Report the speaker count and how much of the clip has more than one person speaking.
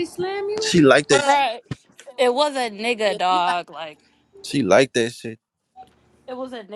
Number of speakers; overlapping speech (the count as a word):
three, about 13%